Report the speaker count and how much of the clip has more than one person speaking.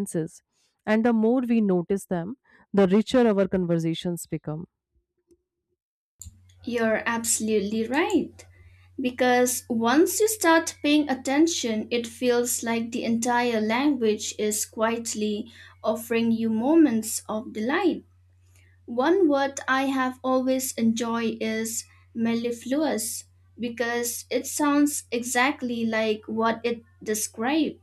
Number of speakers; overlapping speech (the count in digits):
2, no overlap